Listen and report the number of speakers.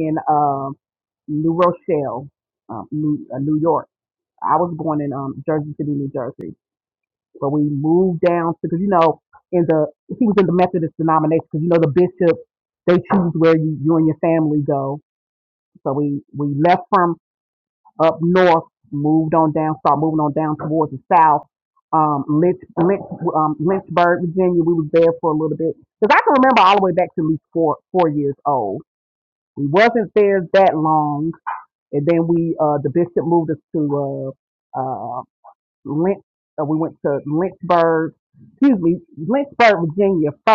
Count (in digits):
1